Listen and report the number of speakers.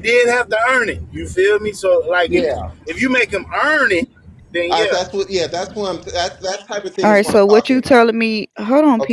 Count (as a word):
three